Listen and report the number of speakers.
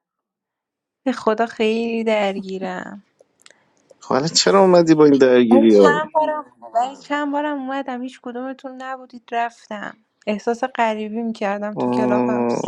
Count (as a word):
two